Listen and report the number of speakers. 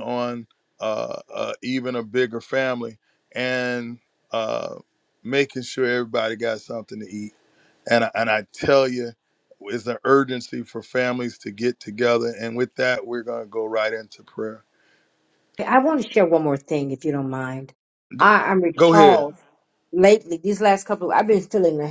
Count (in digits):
2